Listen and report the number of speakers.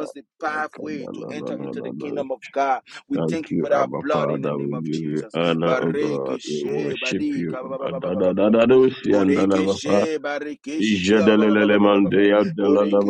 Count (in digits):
2